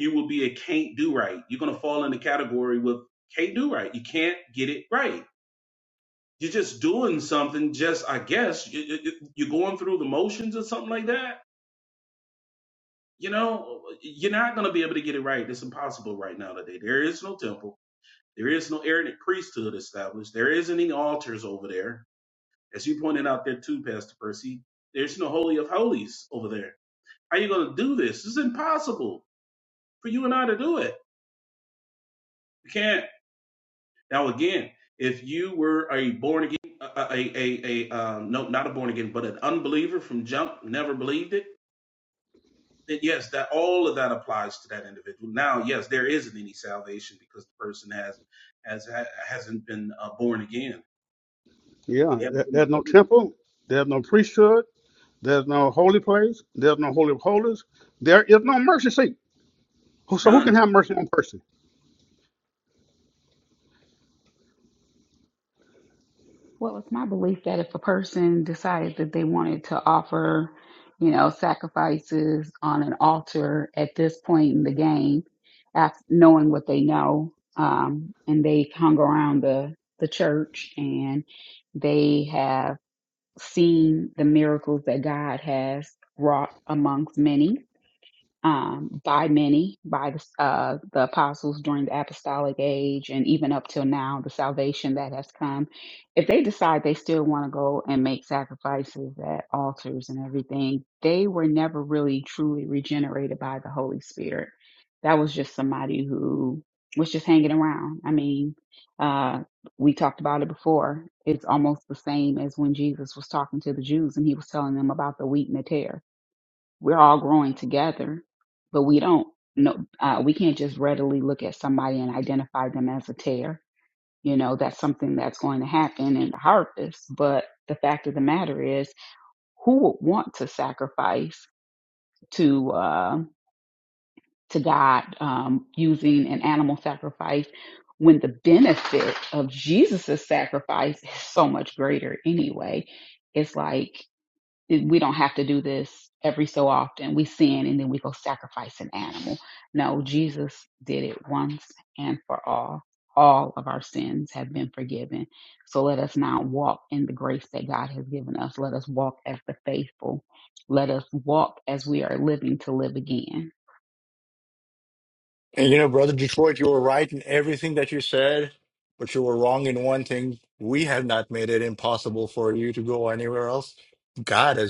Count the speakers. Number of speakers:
four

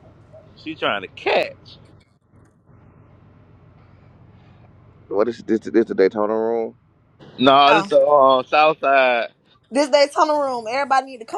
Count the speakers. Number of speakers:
three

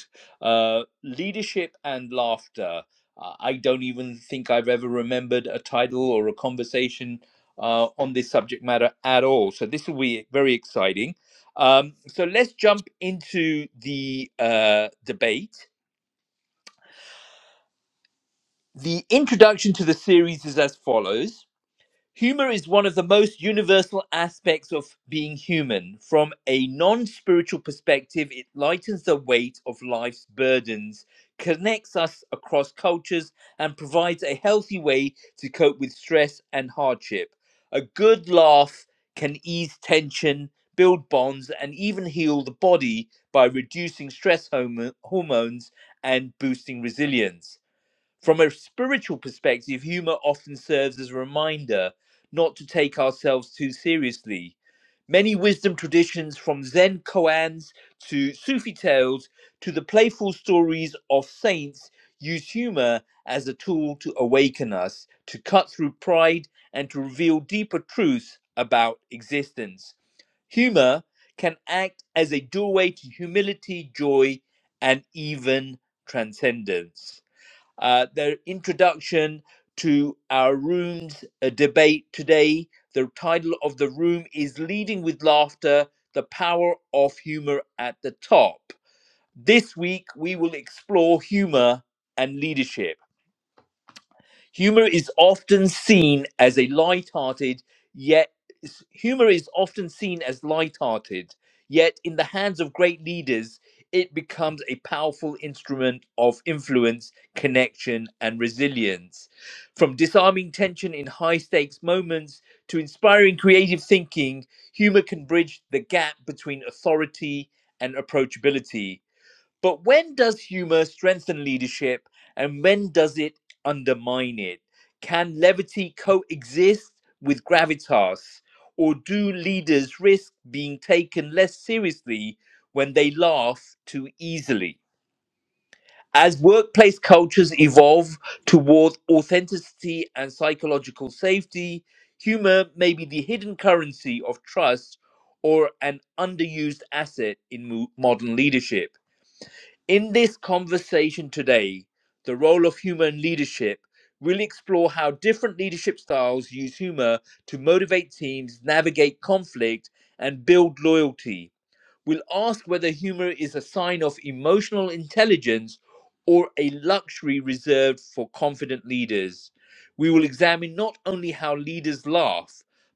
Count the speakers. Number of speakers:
one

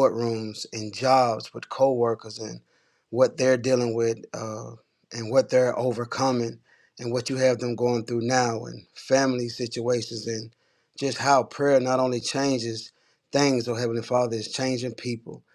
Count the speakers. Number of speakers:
one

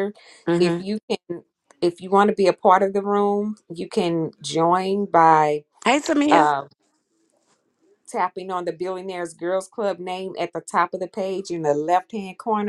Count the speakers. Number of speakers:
two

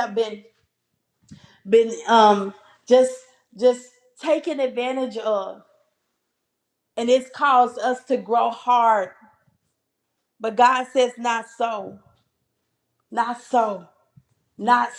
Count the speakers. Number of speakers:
one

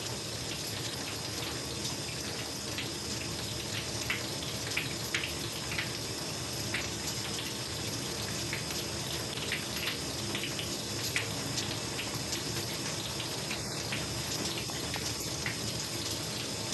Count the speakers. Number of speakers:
zero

